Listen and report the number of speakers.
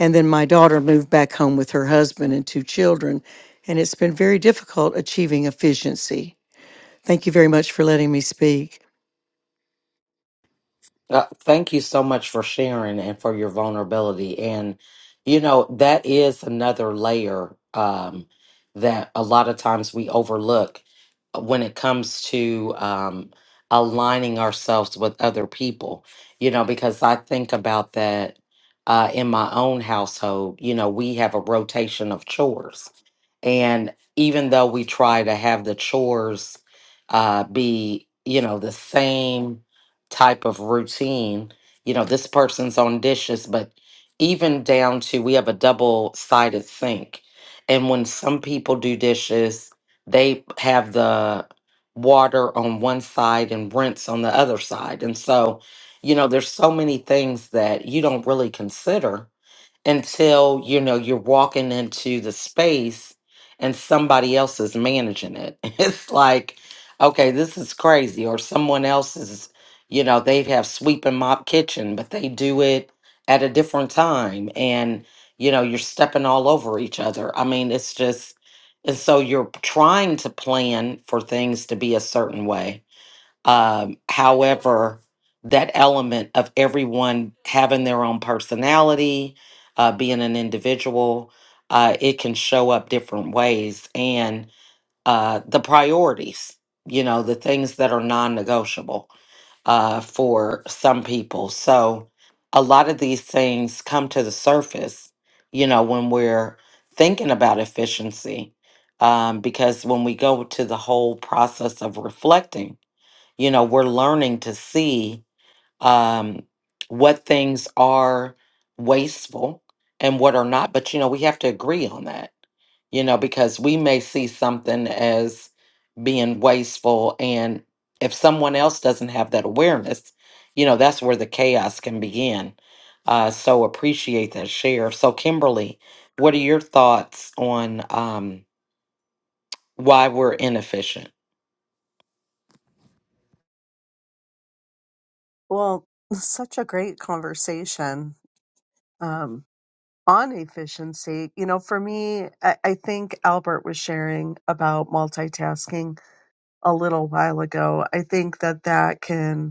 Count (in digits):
3